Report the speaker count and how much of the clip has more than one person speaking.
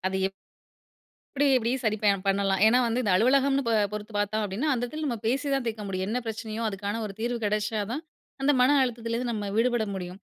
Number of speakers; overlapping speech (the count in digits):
1, no overlap